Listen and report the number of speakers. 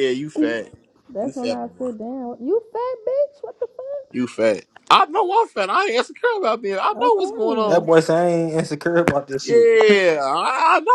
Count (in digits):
3